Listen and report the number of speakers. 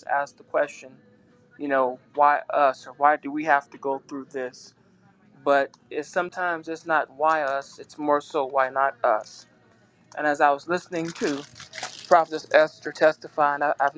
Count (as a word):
one